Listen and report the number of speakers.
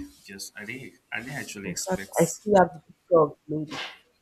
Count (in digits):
2